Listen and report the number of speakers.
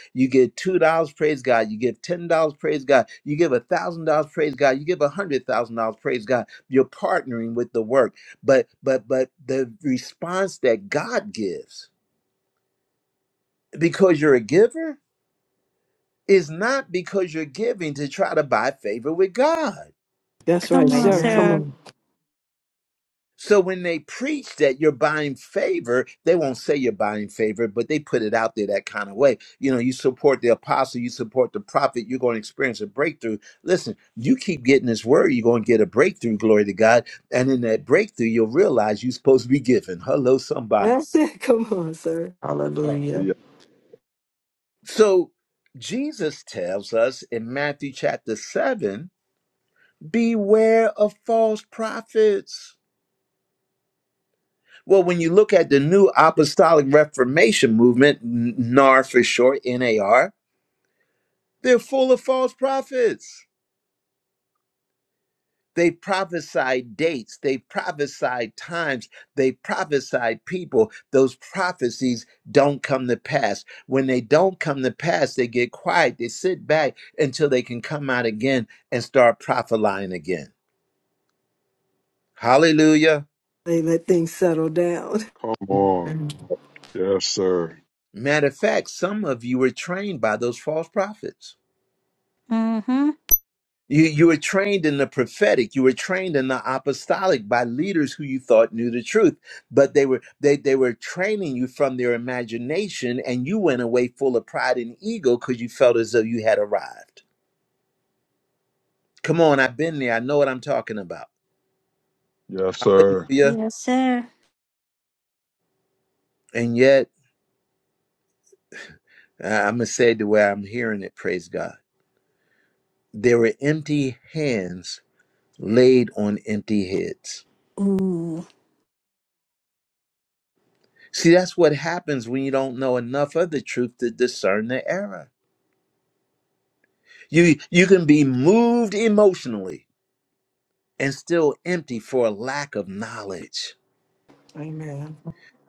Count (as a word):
five